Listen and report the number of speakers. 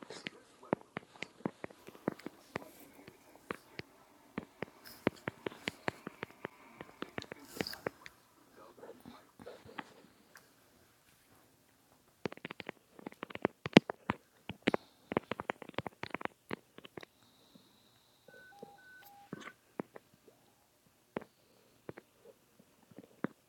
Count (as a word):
zero